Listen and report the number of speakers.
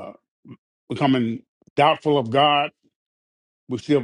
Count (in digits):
1